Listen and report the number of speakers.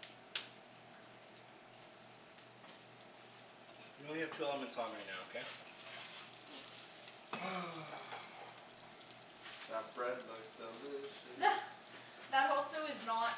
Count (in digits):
3